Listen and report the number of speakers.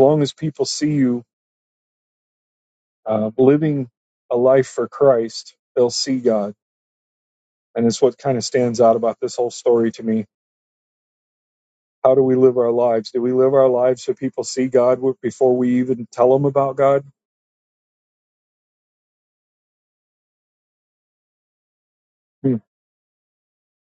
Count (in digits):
1